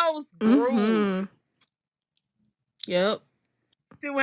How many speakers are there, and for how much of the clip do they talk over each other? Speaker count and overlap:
2, about 15%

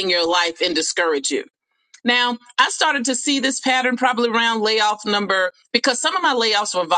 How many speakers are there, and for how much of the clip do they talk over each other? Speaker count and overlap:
1, no overlap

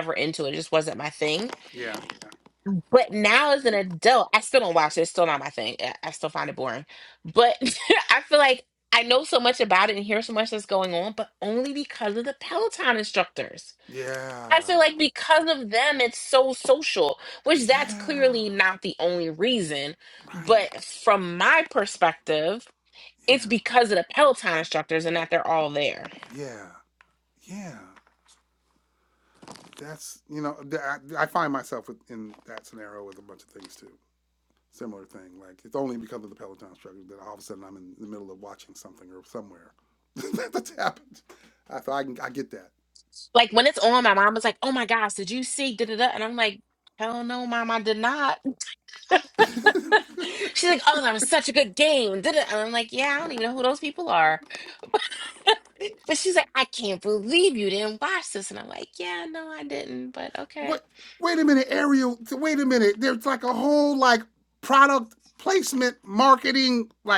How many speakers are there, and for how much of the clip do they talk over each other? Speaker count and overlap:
2, about 2%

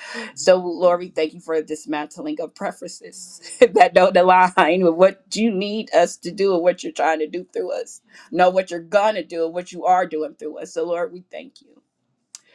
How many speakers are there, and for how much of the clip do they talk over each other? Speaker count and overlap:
1, no overlap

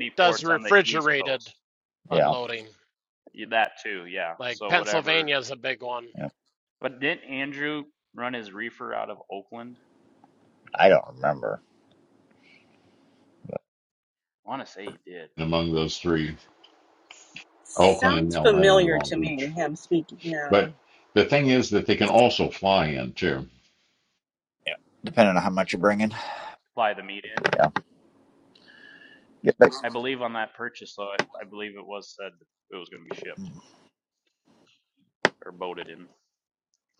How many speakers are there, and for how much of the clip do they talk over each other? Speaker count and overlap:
5, about 12%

